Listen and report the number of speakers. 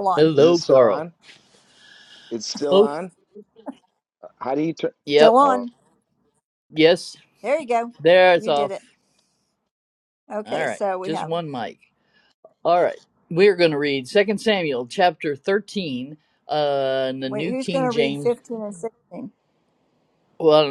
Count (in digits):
3